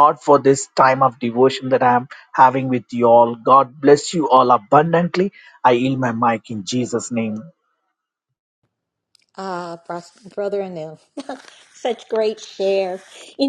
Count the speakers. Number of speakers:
2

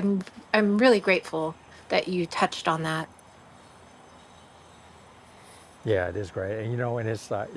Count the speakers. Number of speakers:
2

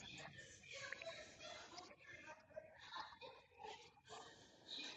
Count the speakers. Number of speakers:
0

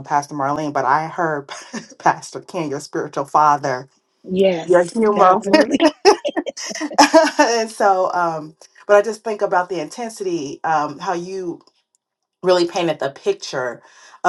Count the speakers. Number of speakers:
2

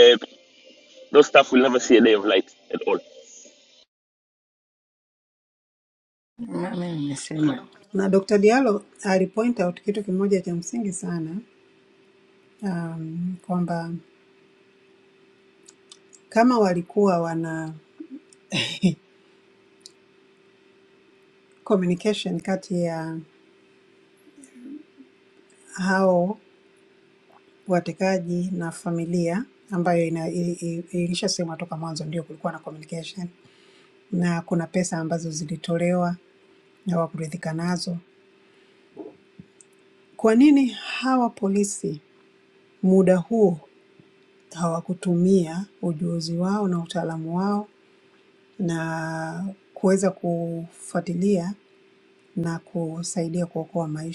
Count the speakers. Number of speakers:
3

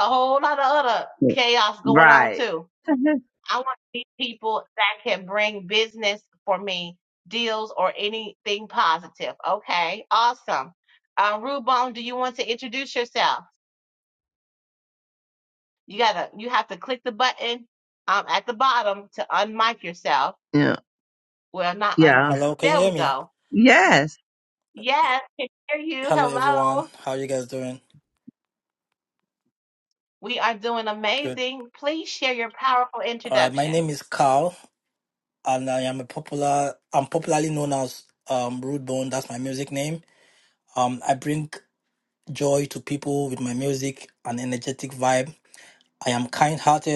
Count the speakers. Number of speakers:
3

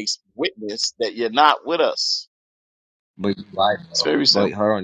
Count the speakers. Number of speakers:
2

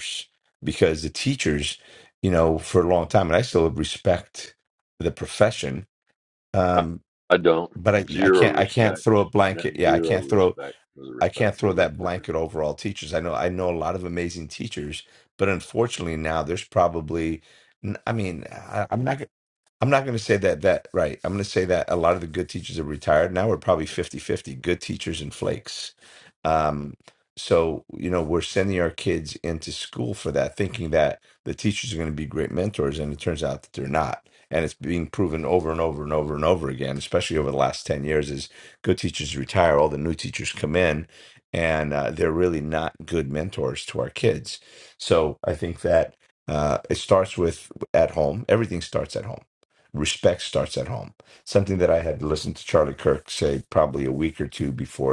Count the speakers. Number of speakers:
2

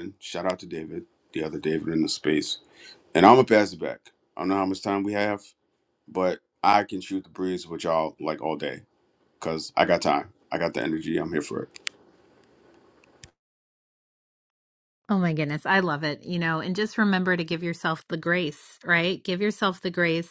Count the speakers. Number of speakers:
2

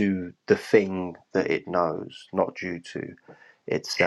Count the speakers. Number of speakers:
1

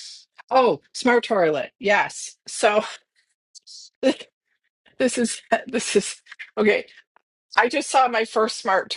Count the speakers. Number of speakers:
1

